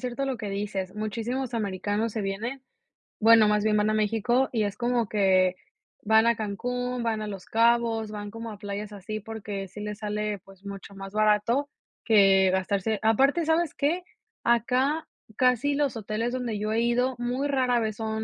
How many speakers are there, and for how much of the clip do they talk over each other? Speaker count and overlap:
one, no overlap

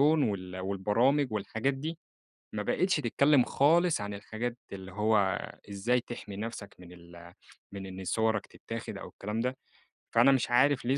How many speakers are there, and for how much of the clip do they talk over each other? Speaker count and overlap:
one, no overlap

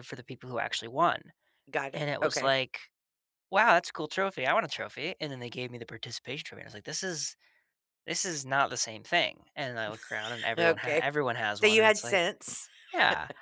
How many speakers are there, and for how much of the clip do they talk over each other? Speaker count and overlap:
two, about 12%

